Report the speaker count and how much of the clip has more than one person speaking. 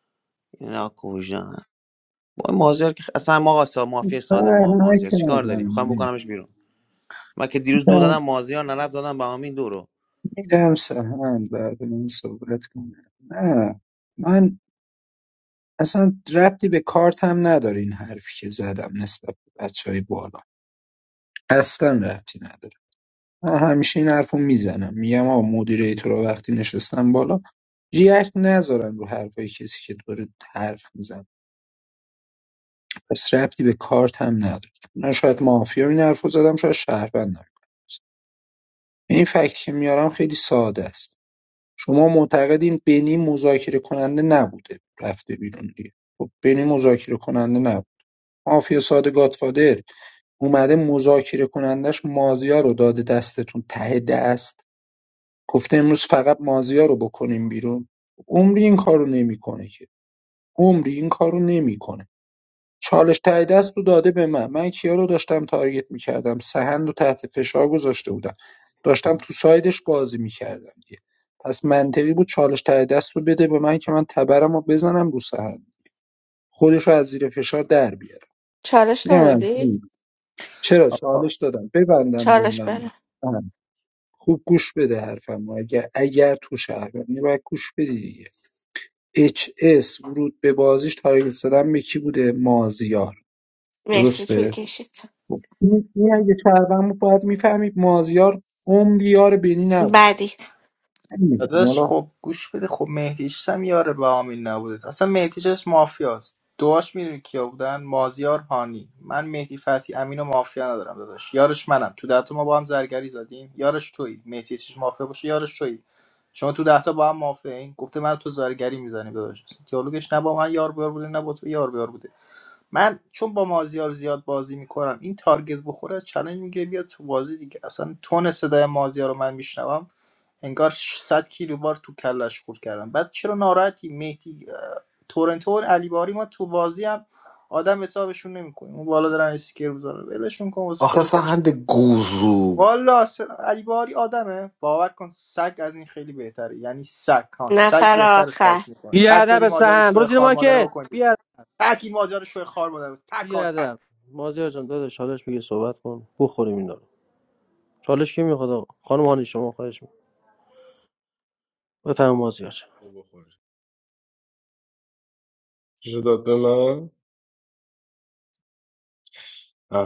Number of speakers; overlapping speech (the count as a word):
seven, about 5%